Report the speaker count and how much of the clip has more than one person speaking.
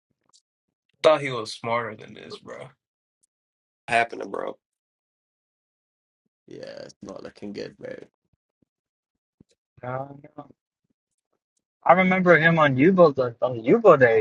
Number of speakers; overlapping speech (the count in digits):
3, no overlap